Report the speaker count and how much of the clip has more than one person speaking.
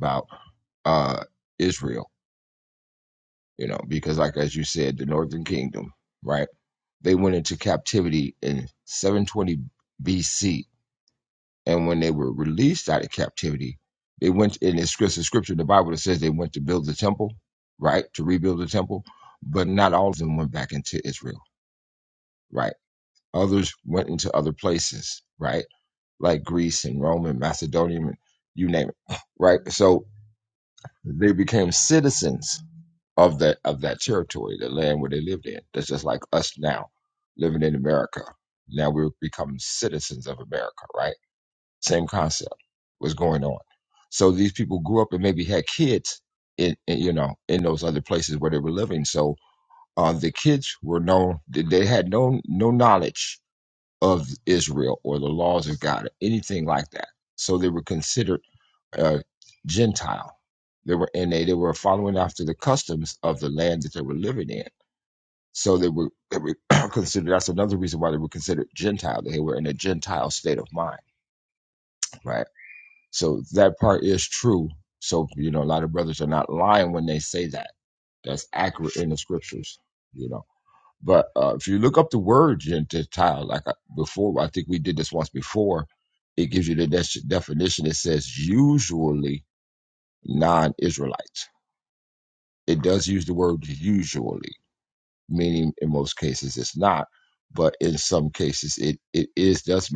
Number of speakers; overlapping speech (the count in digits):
1, no overlap